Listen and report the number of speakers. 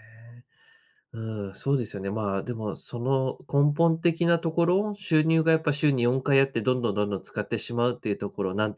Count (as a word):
one